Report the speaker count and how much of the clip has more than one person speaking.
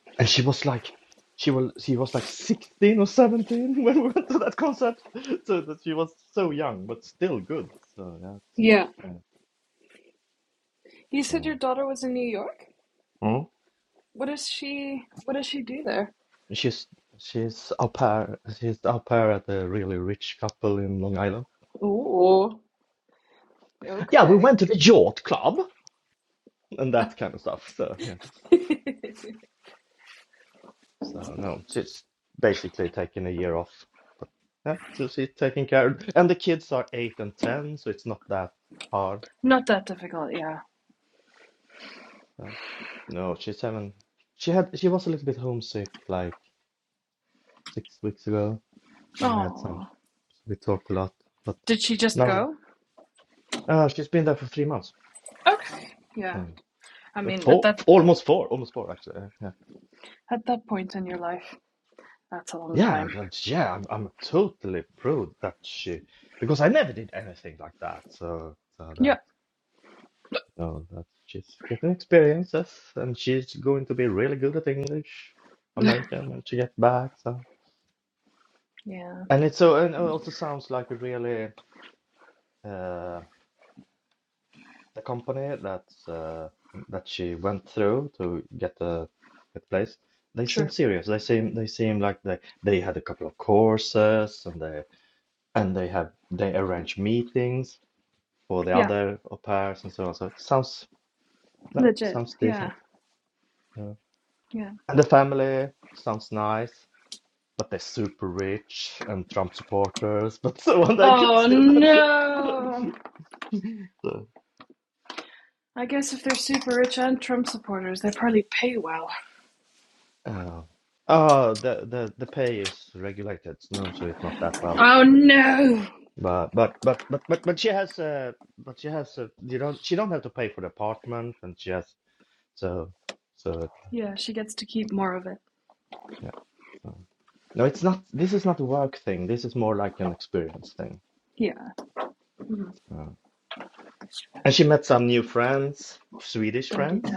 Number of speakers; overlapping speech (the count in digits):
2, about 4%